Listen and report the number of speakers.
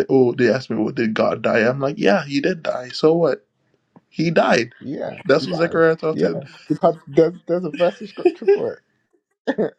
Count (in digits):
2